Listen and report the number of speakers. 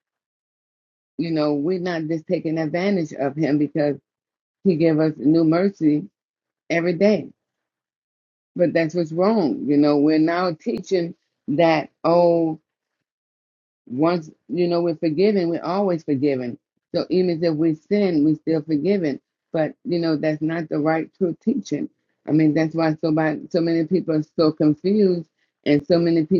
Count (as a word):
one